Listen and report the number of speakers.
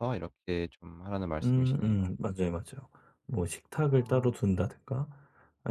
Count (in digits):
2